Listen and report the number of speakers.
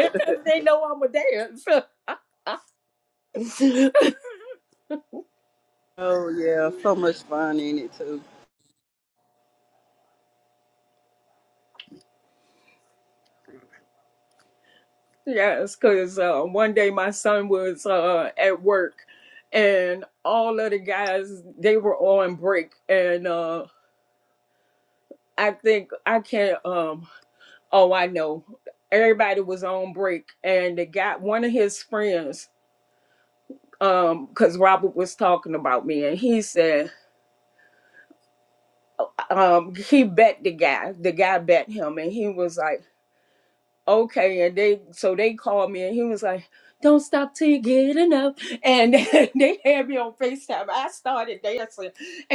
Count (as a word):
two